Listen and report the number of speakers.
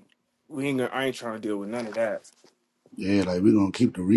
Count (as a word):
two